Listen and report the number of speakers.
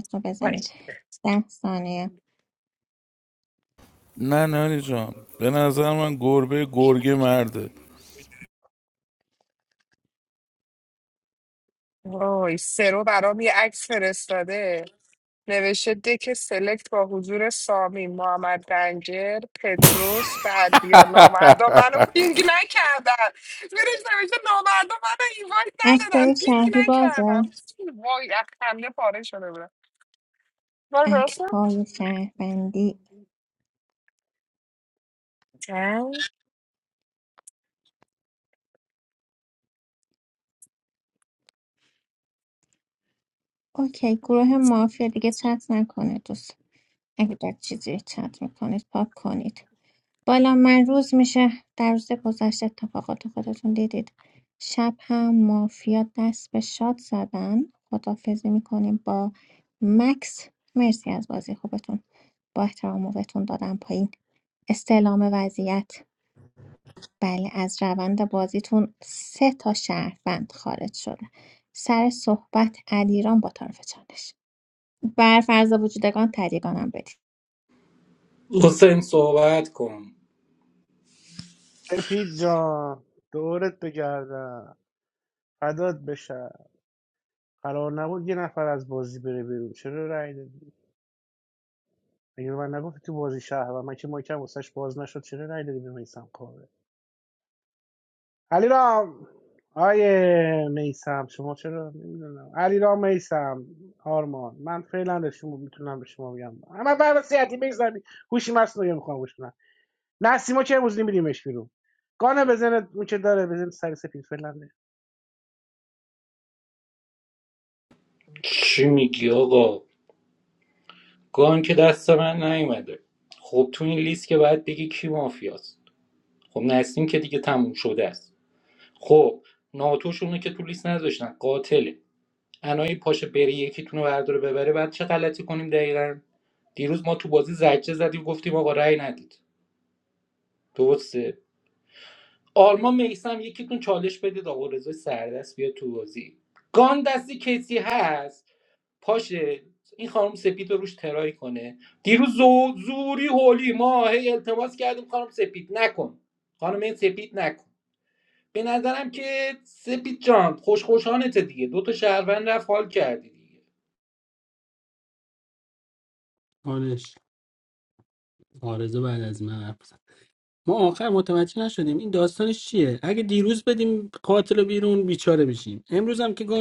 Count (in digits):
6